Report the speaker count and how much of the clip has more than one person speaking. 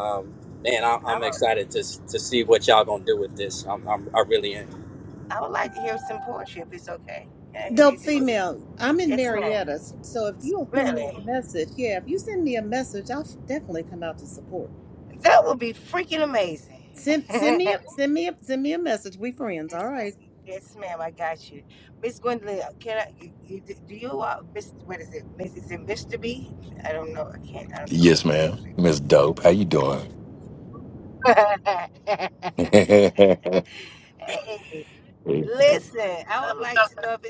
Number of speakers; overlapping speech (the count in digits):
4, about 12%